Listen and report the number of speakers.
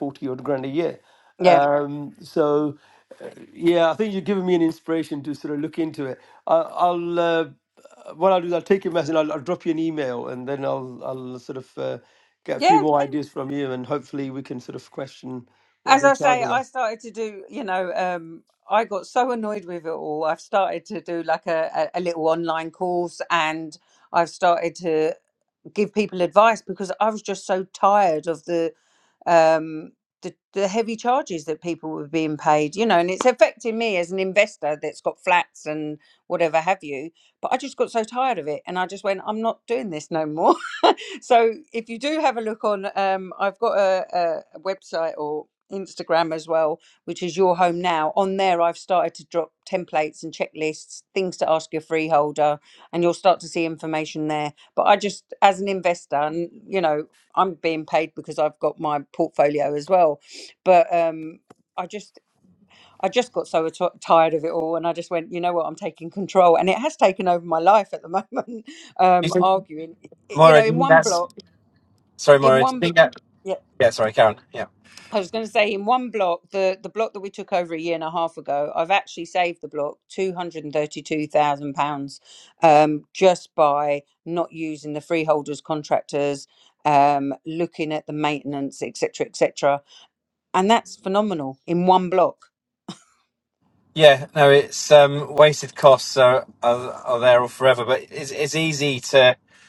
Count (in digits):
3